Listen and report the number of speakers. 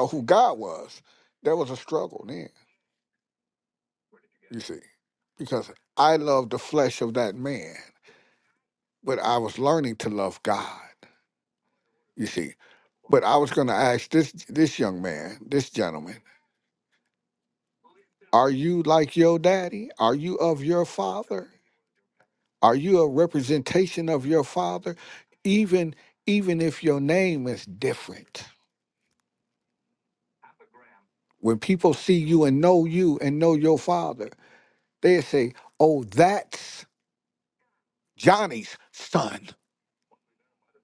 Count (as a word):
one